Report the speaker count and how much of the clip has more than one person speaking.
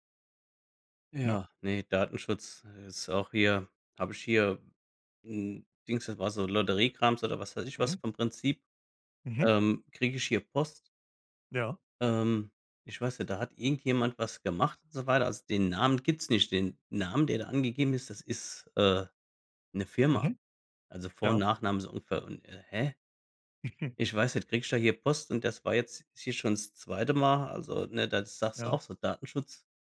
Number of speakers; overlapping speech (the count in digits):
2, about 3%